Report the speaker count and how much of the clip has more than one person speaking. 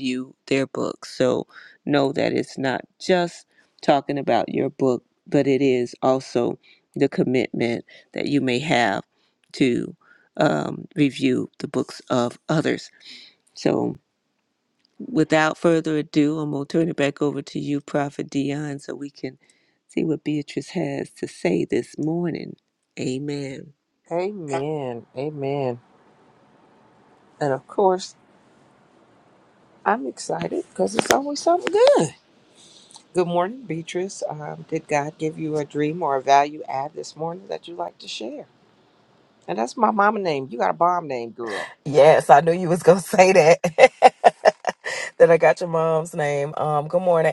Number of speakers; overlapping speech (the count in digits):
3, no overlap